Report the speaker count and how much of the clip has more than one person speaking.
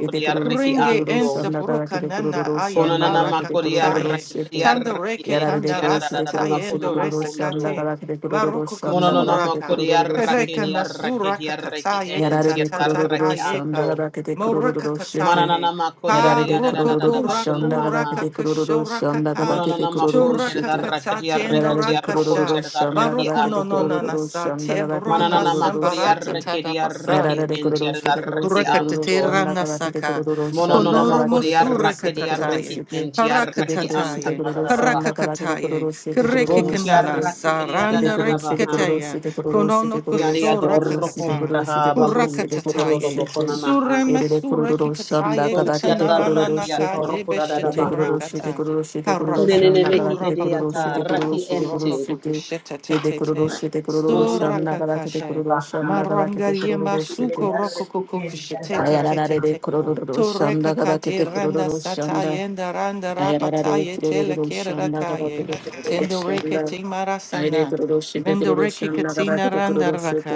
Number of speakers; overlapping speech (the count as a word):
three, about 87%